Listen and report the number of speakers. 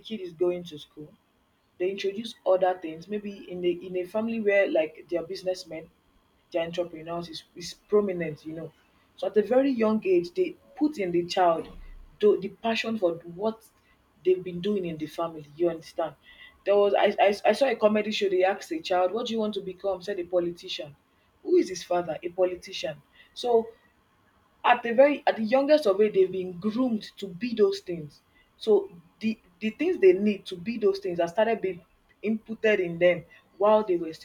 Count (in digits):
1